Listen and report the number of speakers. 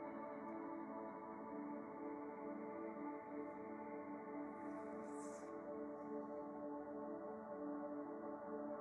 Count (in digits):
0